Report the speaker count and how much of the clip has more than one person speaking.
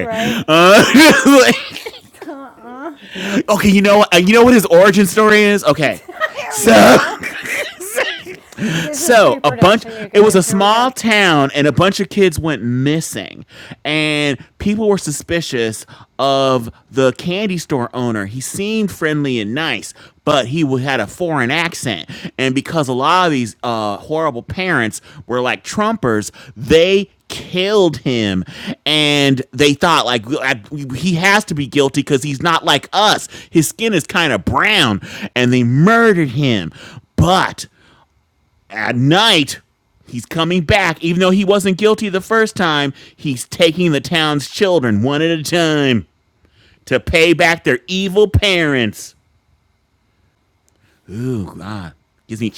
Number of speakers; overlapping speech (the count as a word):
two, about 6%